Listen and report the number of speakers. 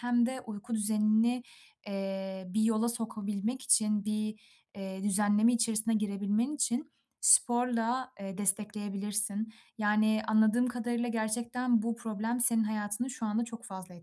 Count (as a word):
one